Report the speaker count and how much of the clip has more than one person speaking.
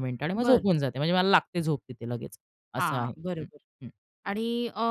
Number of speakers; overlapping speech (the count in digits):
2, about 20%